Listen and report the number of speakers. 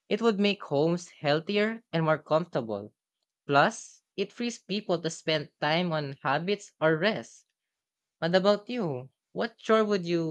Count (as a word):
one